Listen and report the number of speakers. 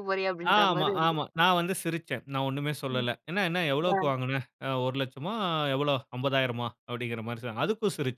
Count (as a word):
two